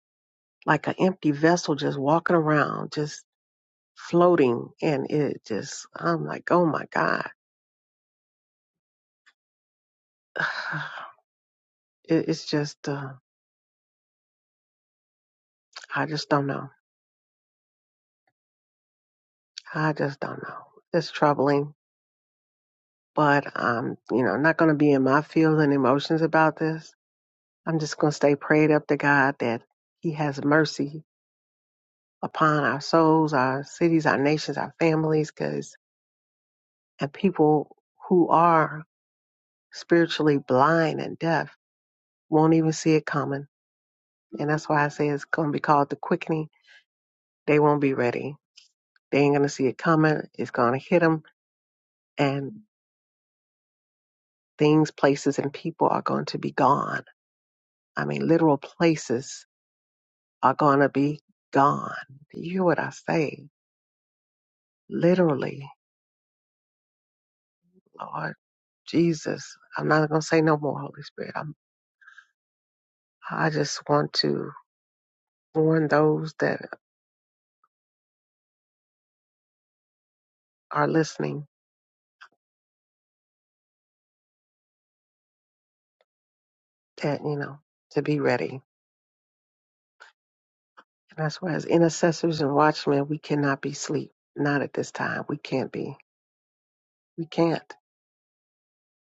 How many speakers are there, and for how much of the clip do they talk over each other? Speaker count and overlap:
1, no overlap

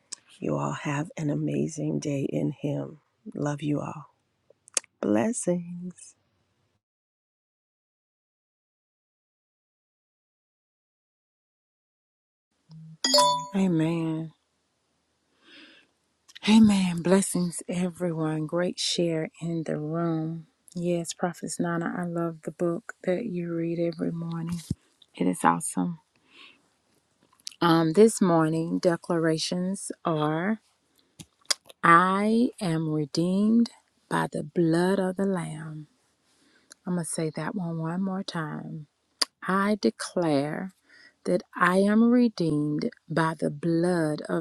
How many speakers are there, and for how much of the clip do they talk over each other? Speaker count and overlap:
2, no overlap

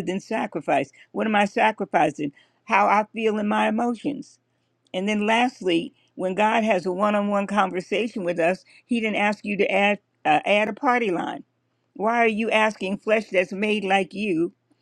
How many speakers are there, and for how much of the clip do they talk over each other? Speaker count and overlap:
1, no overlap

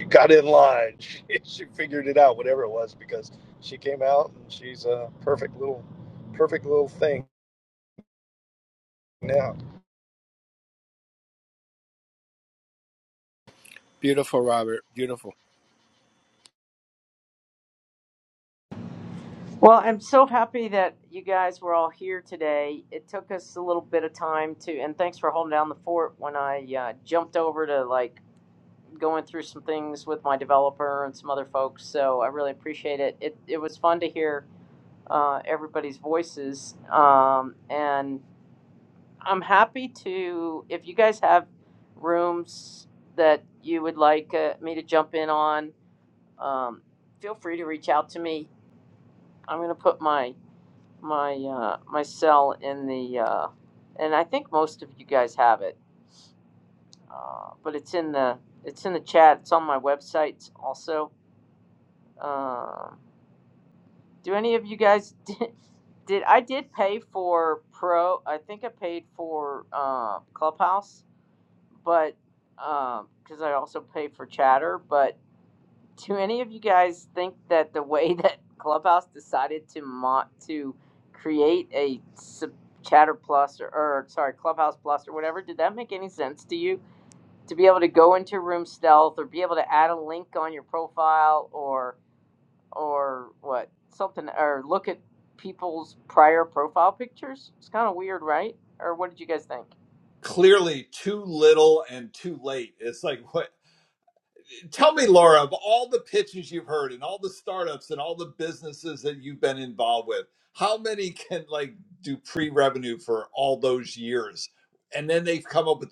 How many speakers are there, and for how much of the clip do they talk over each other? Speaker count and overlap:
4, no overlap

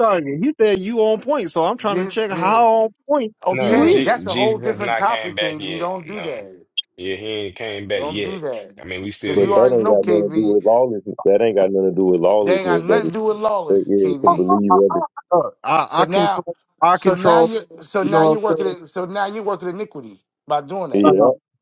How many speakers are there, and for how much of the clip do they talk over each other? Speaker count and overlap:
4, about 41%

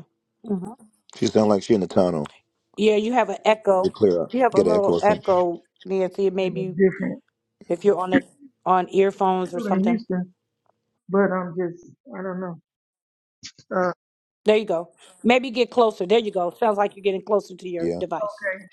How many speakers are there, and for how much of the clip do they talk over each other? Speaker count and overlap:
3, about 10%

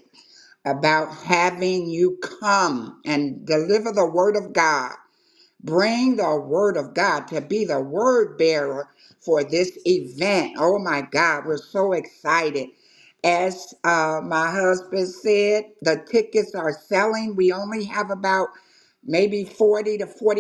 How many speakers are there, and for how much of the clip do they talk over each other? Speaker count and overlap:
1, no overlap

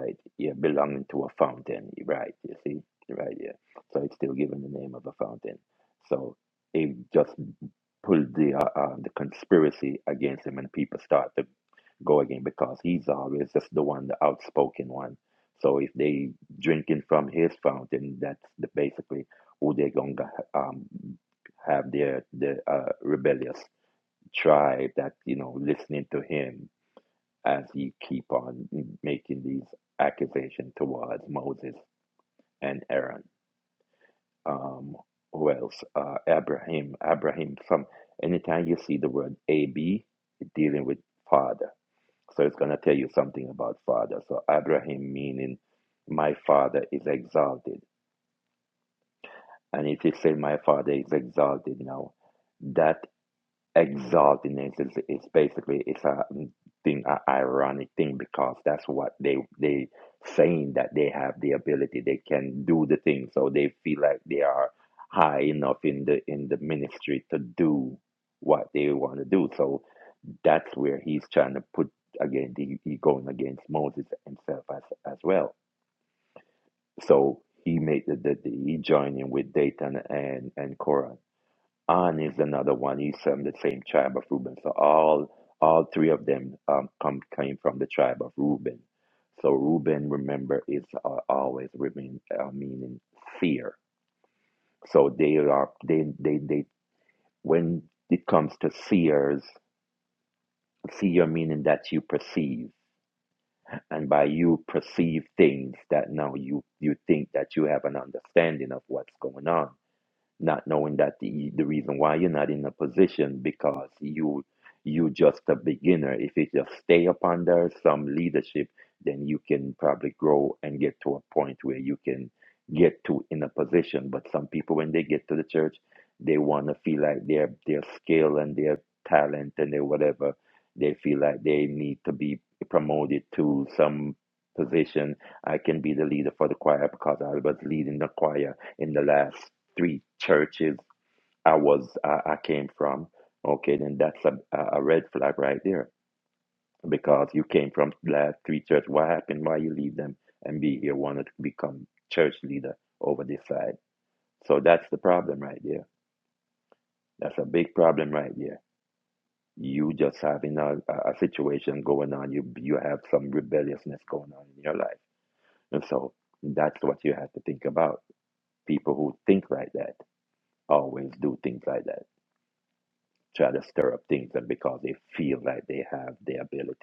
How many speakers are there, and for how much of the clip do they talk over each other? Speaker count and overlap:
1, no overlap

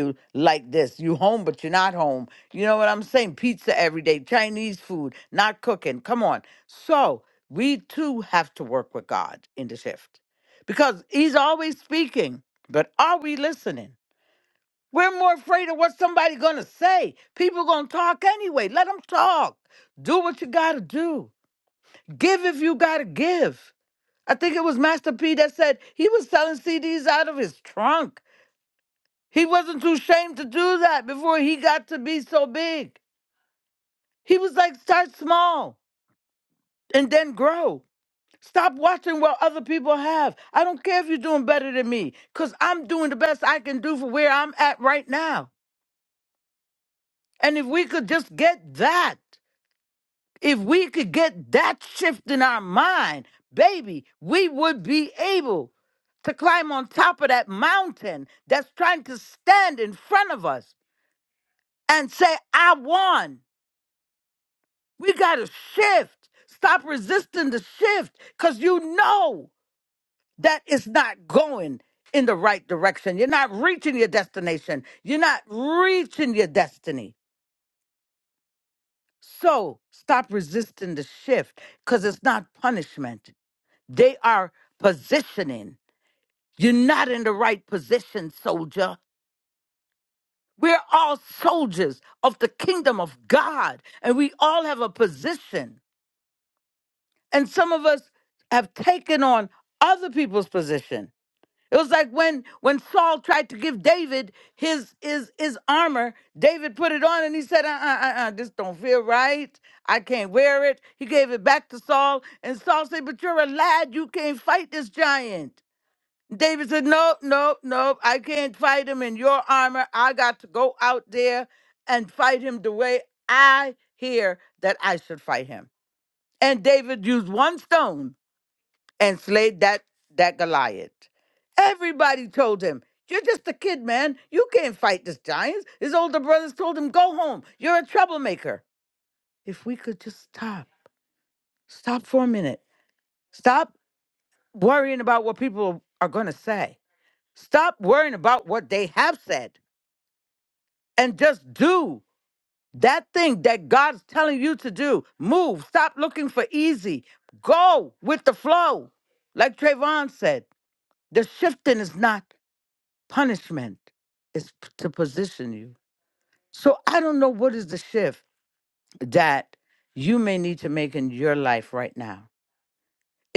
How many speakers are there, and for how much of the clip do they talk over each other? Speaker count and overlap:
1, no overlap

